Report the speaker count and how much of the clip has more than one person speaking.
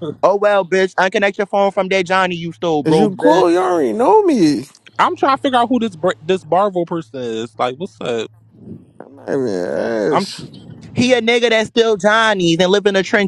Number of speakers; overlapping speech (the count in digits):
3, about 6%